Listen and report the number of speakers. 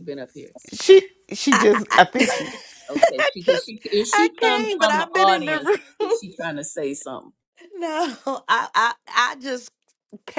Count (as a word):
three